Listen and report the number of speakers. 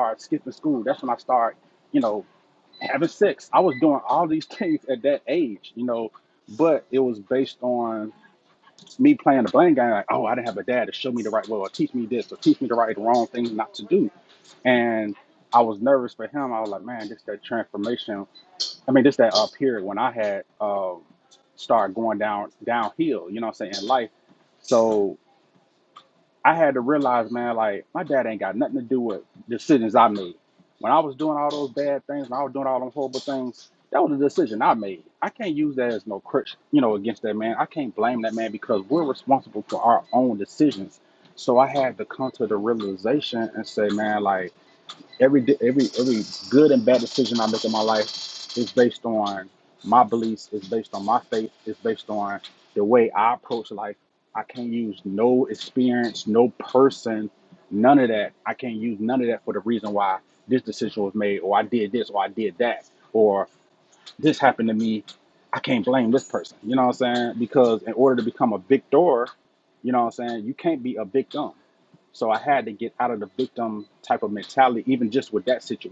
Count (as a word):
one